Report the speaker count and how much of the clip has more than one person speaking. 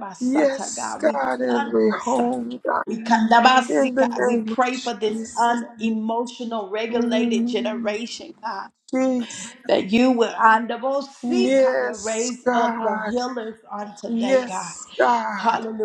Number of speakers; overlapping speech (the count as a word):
two, about 34%